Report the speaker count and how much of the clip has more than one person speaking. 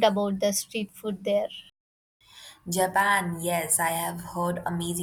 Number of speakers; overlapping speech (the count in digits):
2, no overlap